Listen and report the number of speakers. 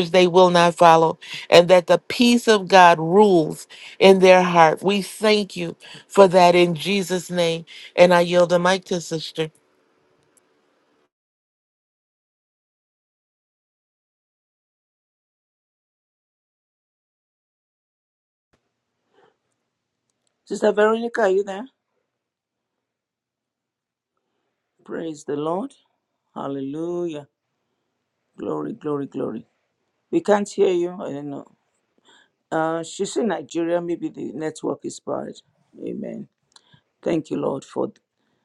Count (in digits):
2